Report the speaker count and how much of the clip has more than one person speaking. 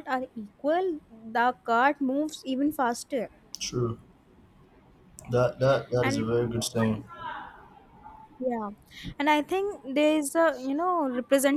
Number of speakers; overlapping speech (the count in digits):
2, about 2%